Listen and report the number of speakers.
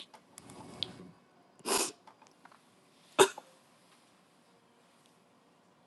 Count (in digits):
0